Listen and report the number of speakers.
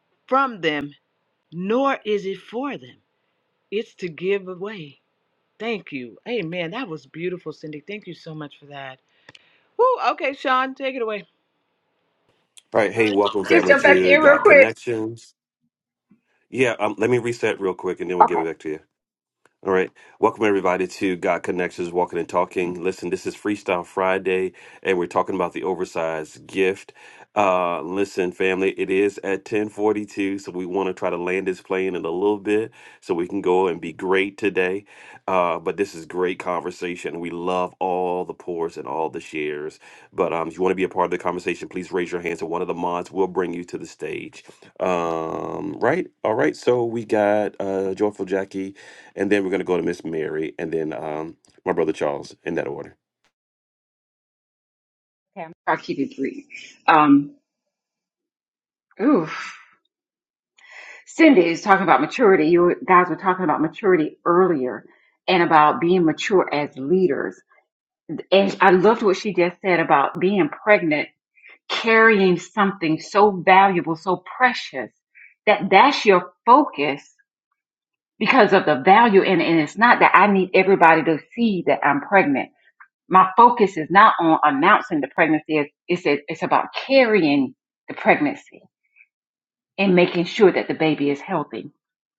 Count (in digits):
3